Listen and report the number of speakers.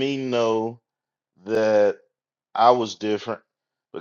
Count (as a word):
one